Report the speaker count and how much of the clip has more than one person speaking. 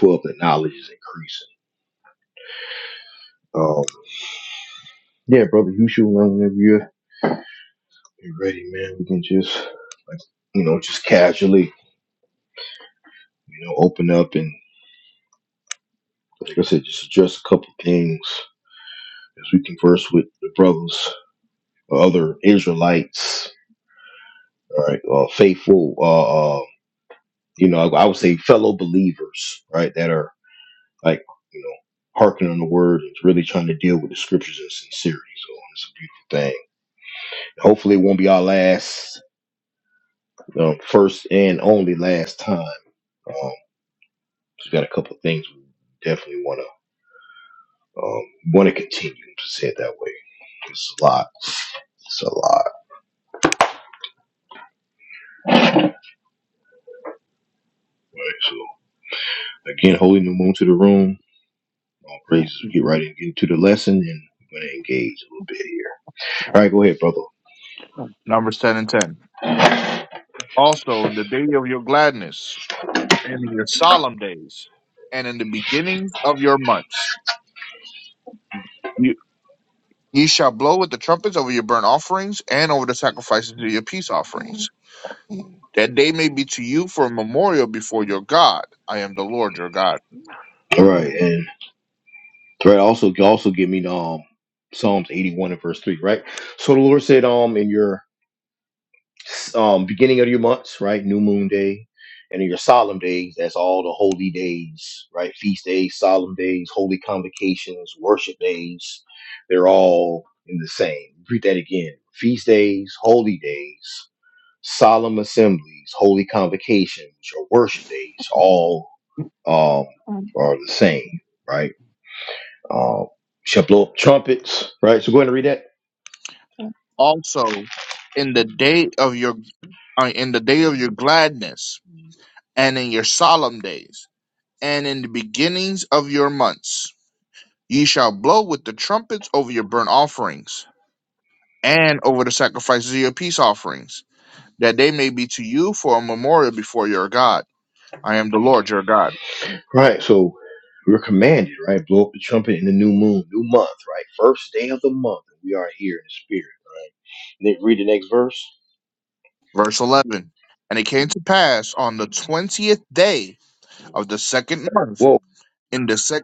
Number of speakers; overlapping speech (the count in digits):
2, under 1%